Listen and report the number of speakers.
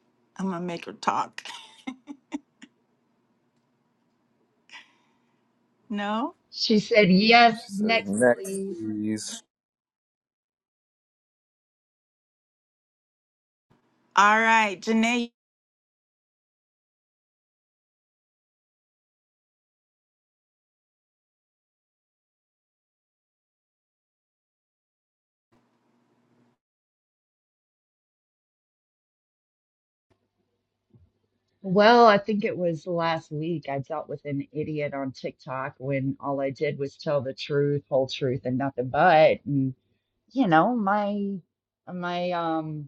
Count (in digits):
3